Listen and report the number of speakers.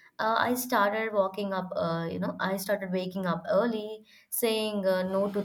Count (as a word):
one